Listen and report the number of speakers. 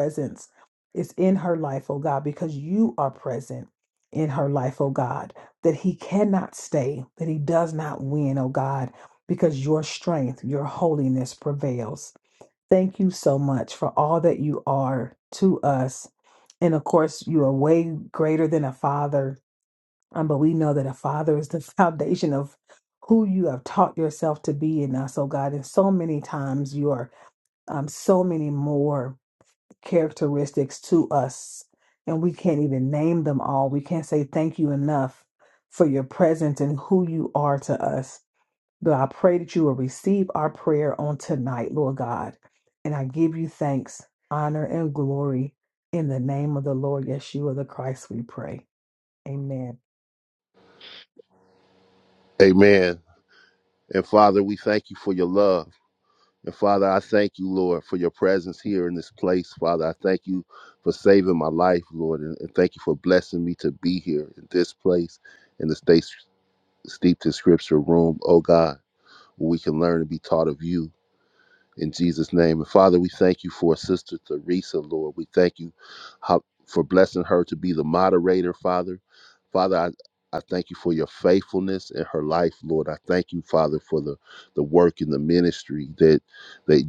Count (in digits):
2